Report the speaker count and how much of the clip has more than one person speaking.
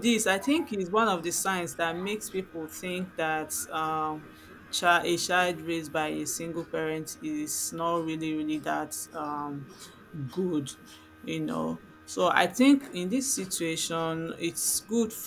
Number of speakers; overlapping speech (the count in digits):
1, no overlap